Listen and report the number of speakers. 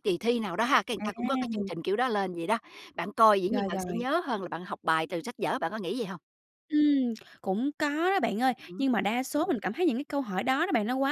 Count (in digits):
2